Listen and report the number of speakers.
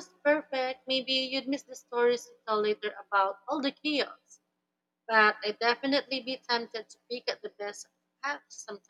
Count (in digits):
1